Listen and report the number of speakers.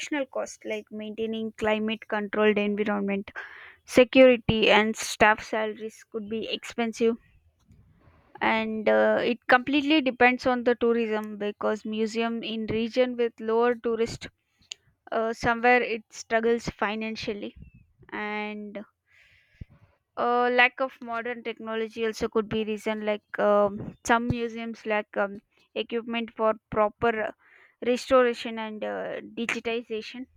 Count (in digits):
1